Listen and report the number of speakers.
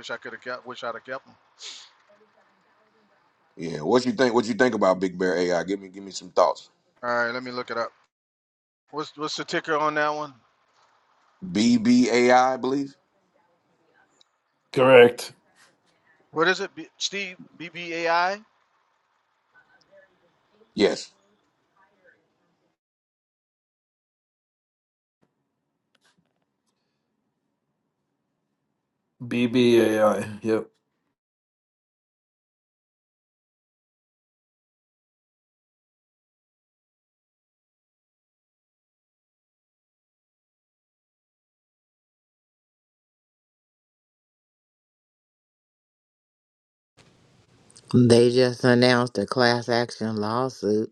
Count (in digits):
4